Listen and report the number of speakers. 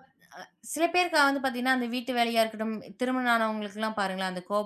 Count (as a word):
one